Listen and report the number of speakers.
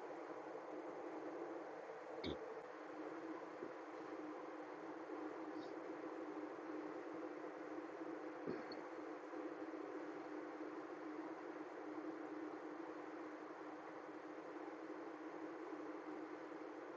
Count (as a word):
zero